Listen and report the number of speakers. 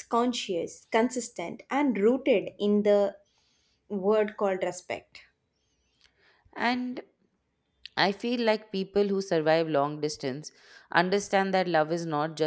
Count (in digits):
2